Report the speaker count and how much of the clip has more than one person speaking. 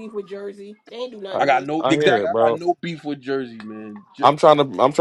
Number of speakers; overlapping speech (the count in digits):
3, about 24%